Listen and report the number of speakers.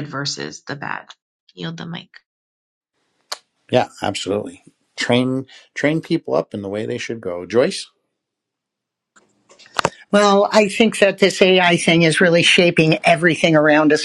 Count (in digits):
3